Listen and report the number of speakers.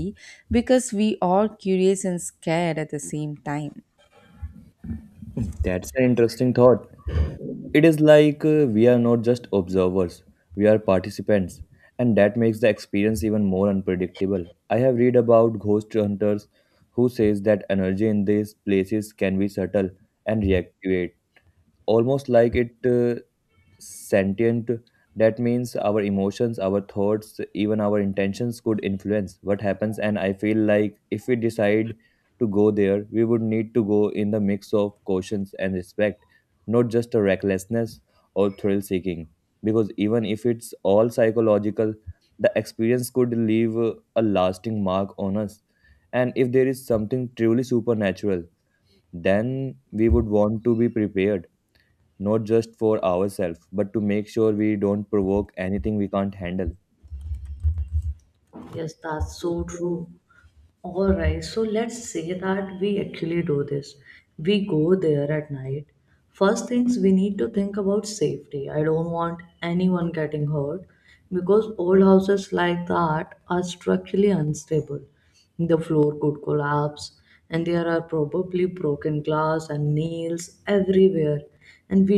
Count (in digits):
3